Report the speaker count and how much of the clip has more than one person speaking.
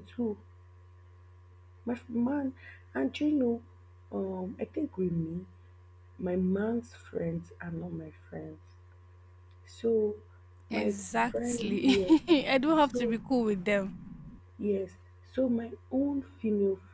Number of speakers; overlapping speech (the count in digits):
2, about 8%